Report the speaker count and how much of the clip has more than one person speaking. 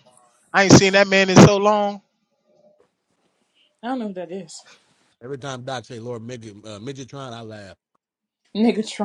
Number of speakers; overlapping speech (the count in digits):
3, no overlap